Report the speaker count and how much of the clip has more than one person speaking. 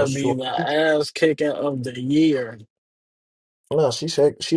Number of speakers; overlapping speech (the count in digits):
2, about 7%